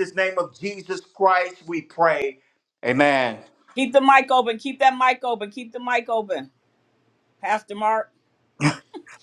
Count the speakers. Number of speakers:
2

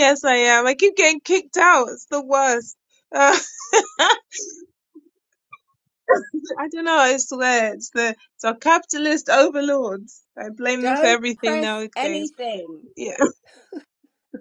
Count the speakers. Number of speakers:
2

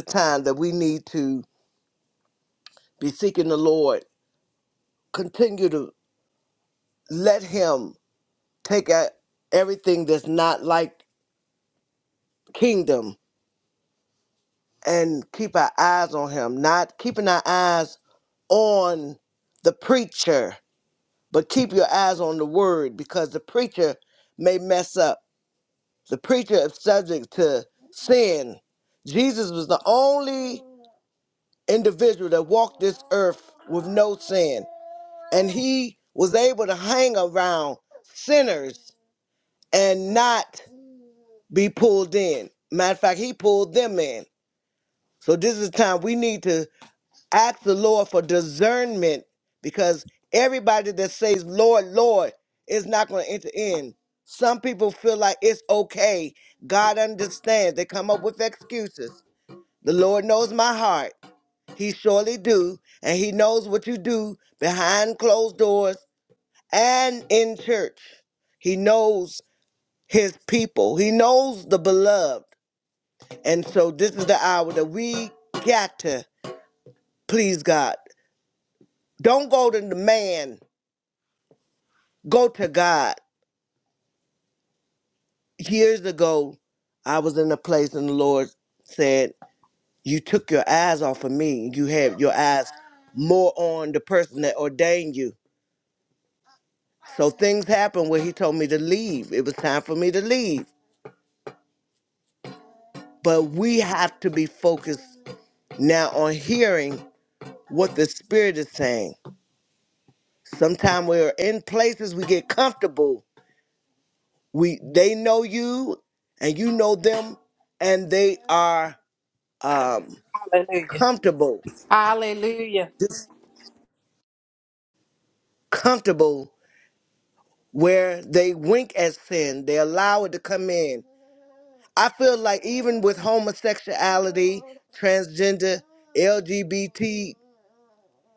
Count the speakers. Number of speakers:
2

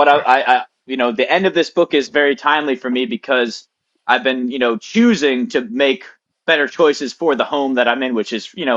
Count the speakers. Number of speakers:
1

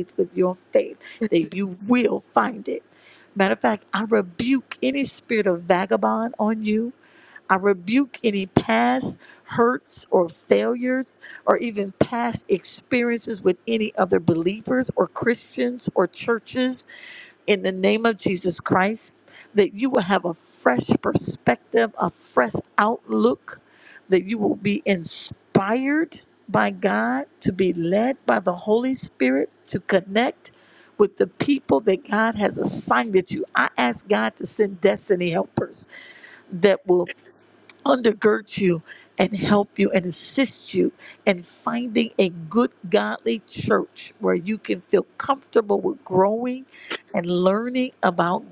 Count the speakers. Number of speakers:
1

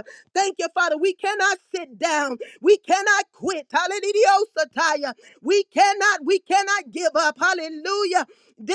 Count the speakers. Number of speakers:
1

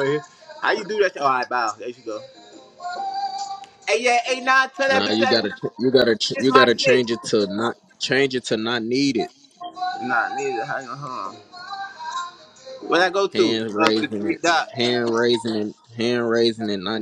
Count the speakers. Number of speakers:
2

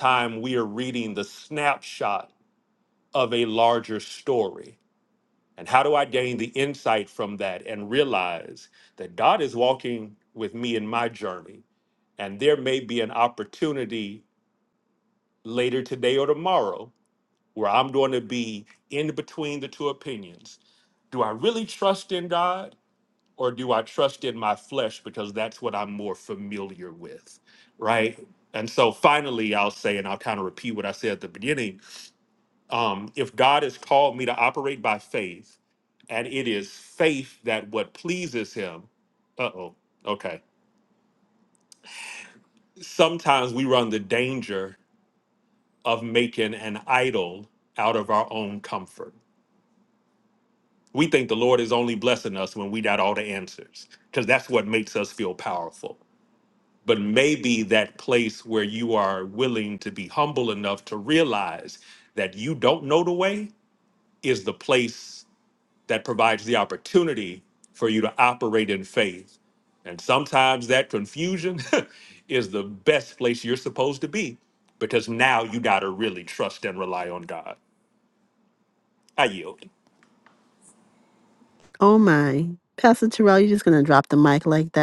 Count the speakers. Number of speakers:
2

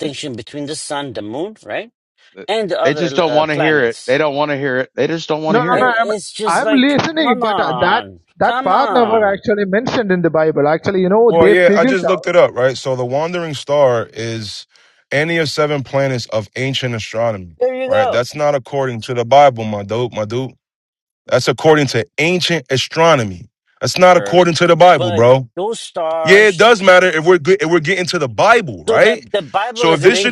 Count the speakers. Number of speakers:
4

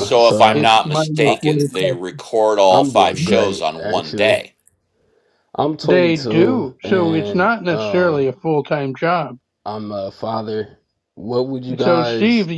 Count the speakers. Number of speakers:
3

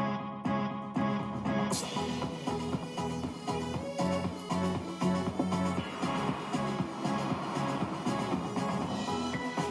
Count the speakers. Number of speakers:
0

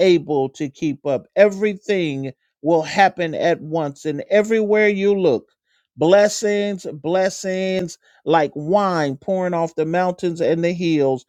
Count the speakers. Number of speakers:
1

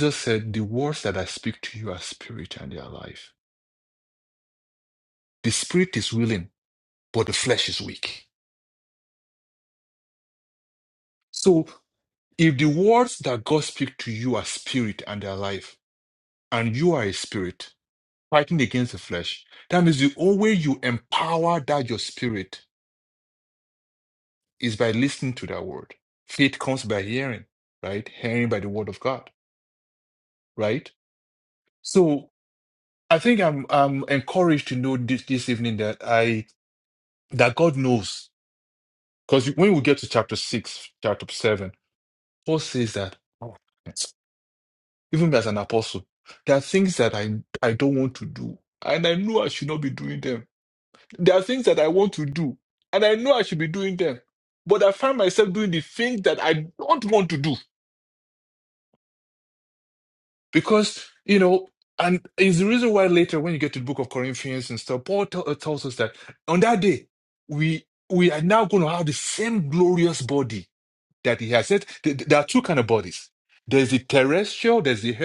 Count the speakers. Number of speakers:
1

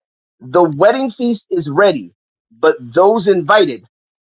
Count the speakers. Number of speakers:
1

